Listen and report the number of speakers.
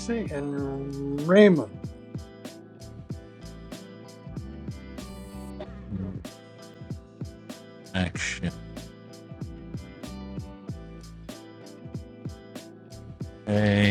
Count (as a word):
two